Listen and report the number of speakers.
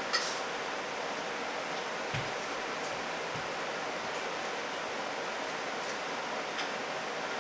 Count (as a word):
zero